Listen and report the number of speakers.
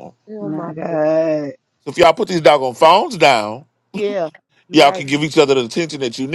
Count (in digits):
3